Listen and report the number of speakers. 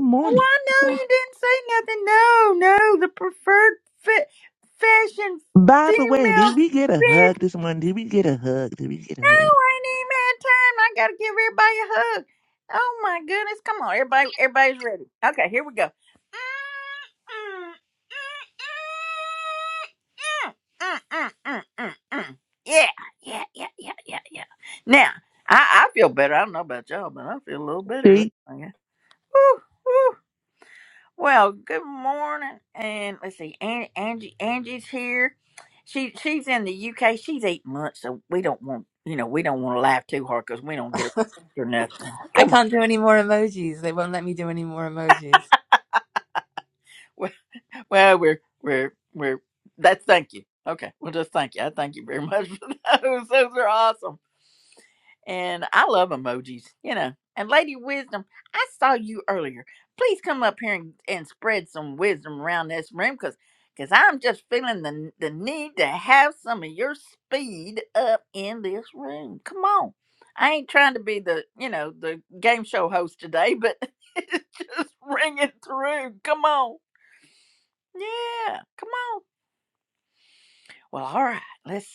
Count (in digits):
3